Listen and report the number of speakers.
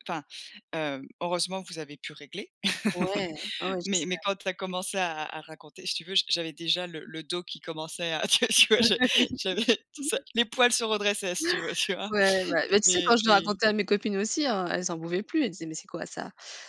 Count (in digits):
2